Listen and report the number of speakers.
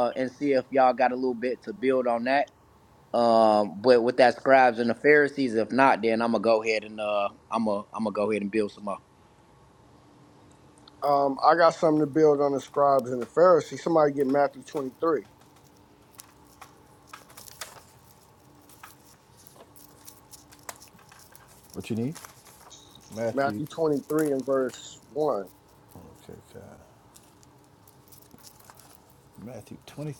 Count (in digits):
3